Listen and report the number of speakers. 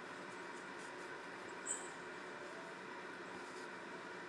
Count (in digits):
0